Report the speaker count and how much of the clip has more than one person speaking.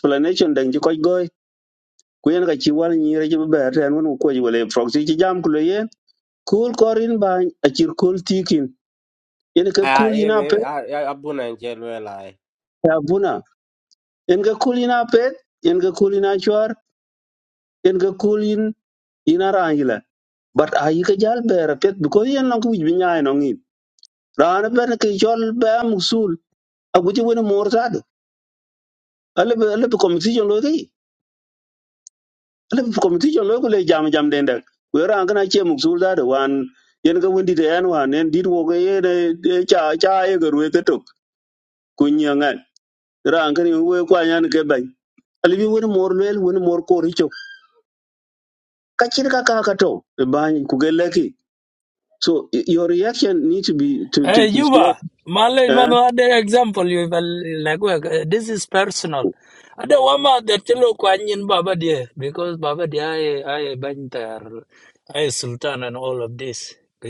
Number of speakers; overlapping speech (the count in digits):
3, about 3%